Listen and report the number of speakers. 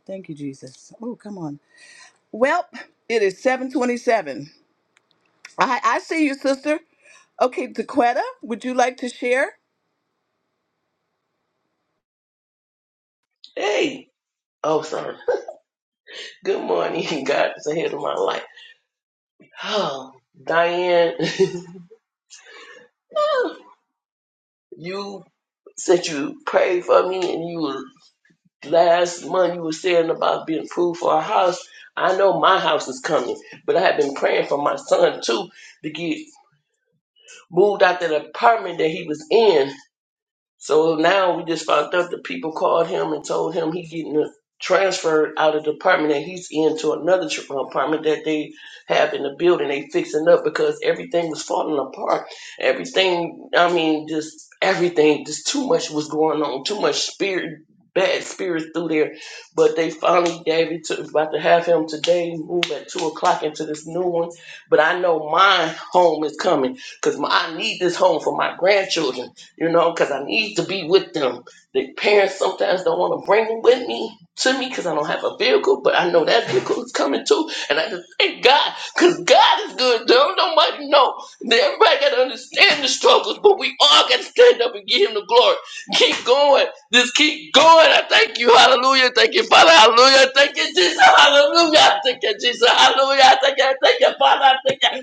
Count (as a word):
two